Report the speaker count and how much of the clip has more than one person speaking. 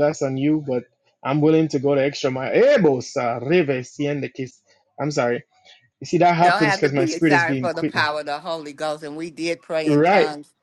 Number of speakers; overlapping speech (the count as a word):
two, about 19%